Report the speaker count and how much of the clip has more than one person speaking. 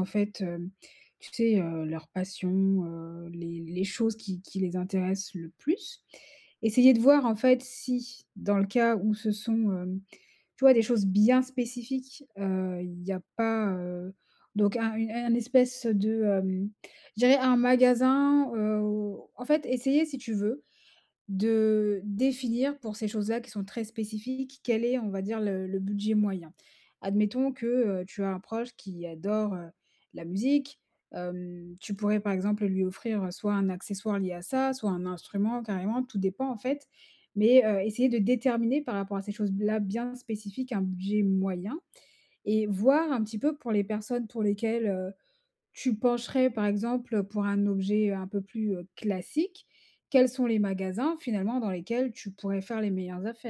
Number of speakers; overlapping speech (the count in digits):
1, no overlap